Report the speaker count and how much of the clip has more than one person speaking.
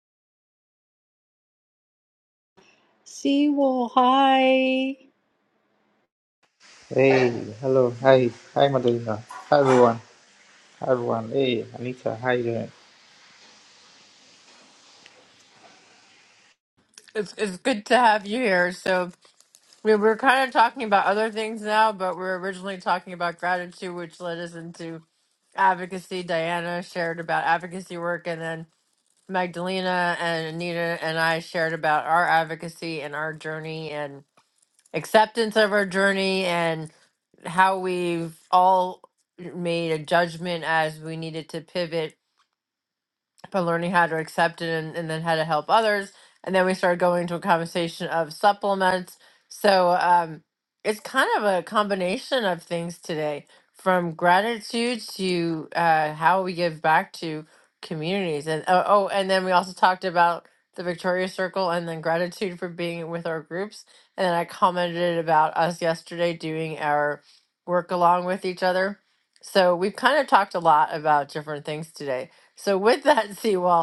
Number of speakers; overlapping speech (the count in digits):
3, no overlap